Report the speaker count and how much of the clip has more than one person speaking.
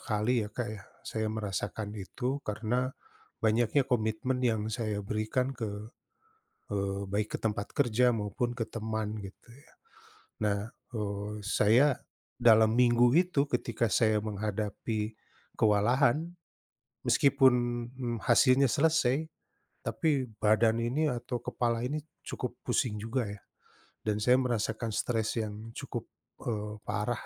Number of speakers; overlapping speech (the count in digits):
1, no overlap